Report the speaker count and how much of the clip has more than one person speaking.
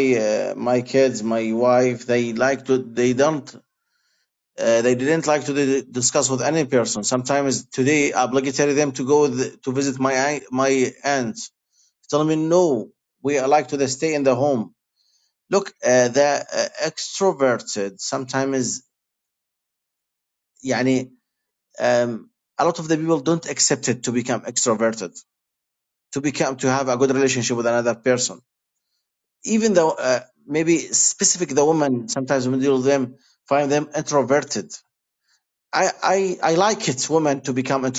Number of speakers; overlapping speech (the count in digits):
1, no overlap